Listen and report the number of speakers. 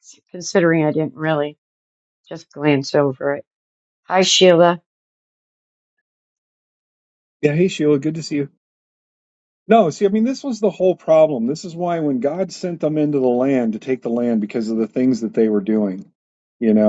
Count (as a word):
two